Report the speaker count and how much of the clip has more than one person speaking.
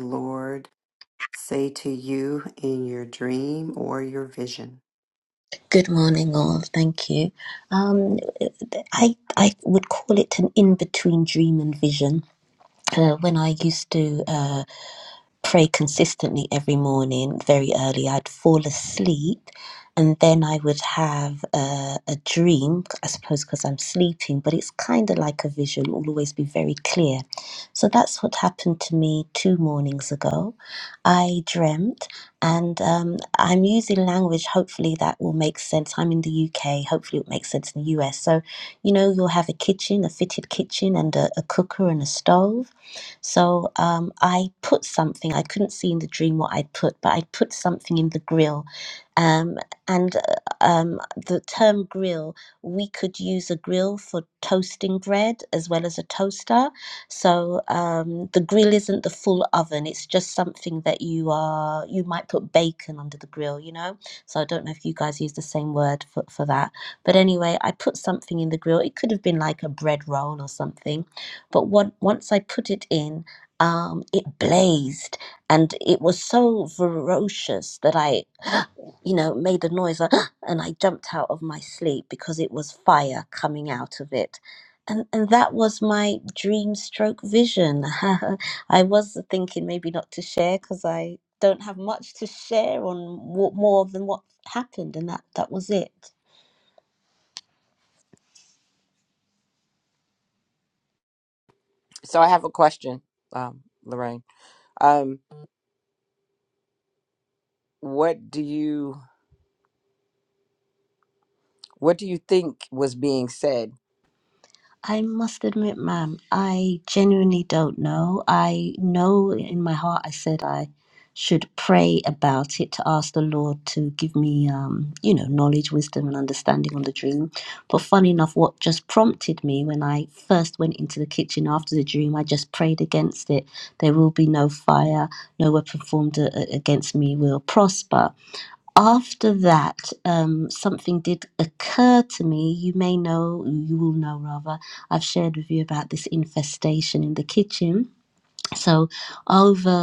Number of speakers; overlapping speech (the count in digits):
3, no overlap